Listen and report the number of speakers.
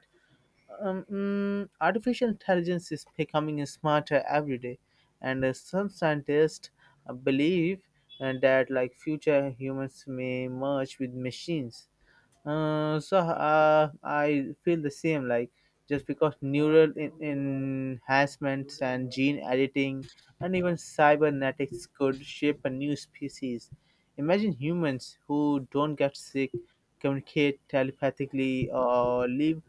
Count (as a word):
one